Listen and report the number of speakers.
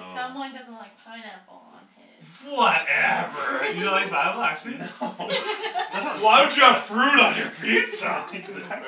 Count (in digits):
3